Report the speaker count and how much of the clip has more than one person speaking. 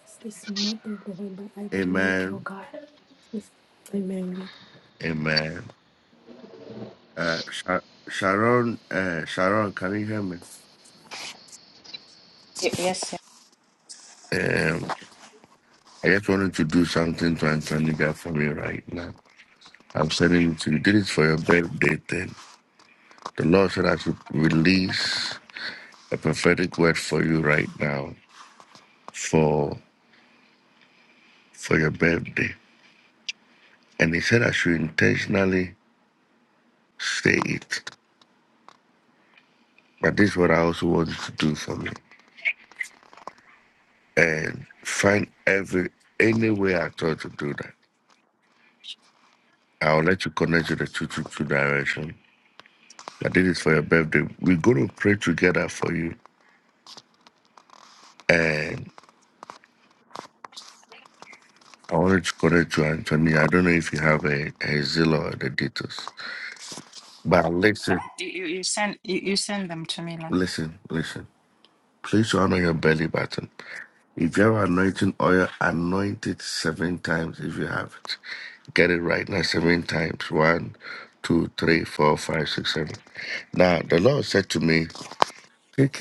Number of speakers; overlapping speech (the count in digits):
3, about 1%